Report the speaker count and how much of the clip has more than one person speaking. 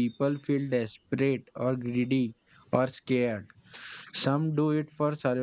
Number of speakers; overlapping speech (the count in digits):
1, no overlap